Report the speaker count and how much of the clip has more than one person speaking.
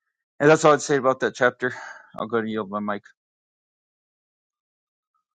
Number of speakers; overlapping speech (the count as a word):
one, no overlap